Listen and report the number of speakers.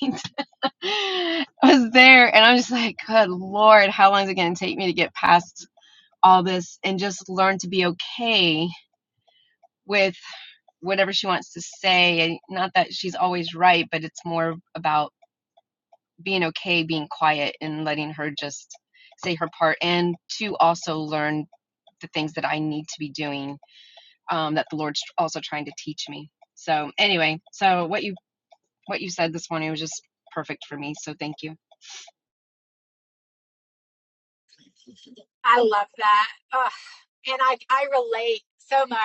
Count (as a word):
two